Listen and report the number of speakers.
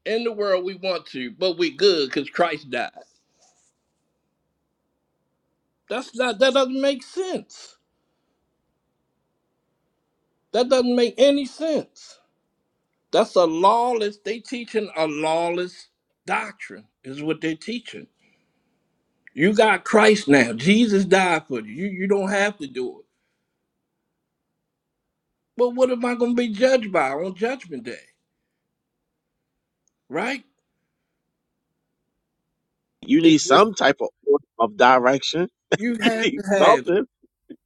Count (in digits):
2